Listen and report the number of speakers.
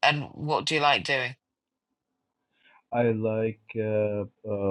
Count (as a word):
two